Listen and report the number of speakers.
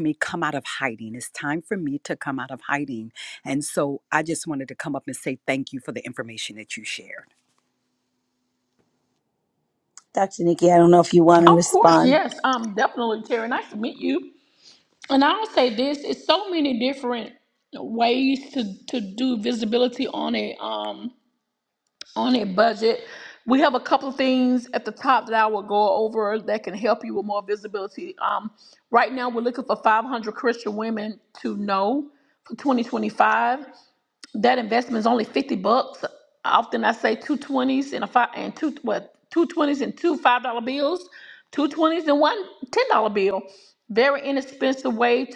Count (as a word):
three